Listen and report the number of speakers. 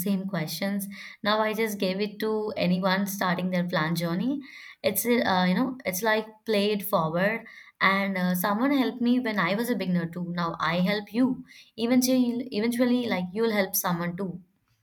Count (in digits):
1